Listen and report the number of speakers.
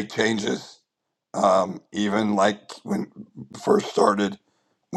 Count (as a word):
one